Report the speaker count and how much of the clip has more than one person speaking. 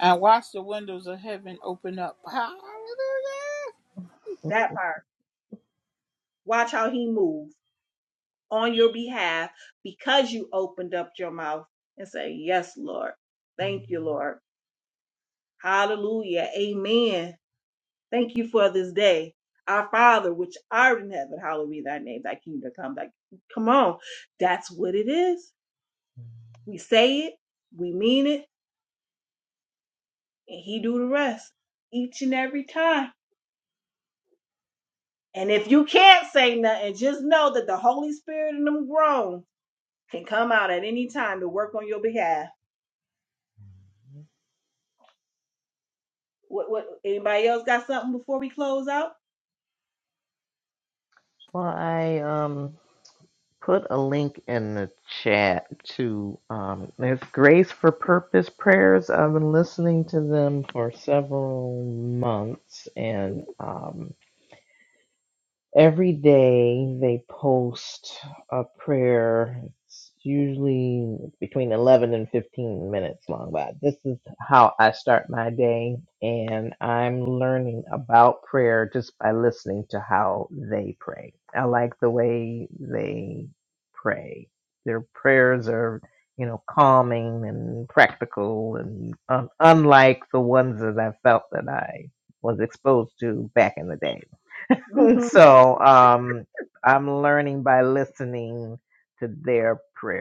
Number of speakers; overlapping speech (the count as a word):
three, under 1%